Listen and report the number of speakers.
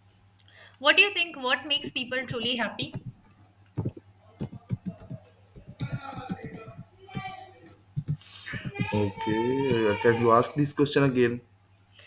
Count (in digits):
2